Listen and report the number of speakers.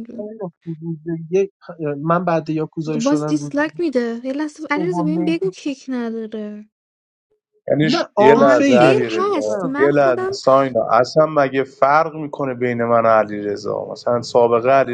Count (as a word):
three